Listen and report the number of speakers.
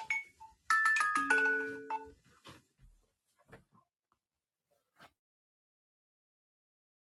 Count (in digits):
0